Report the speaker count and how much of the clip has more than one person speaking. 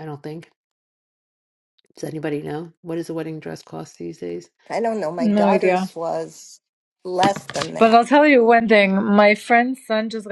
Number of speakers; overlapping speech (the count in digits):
3, about 8%